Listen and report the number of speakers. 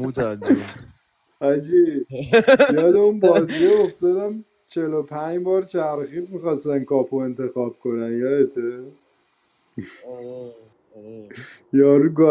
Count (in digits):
2